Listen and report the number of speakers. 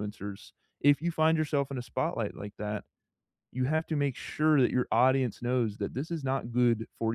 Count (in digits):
1